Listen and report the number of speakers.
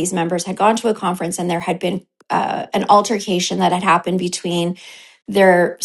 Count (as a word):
one